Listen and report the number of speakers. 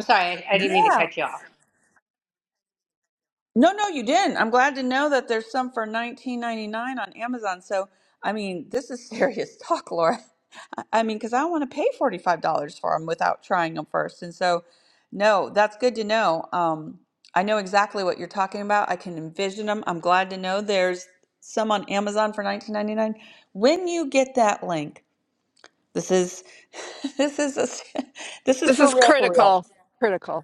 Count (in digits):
3